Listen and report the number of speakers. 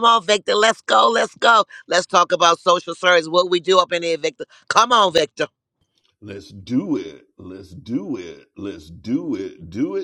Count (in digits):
2